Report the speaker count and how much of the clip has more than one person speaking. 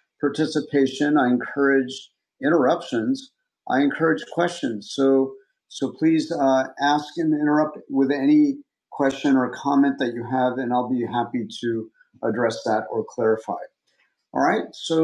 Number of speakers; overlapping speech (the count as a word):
one, no overlap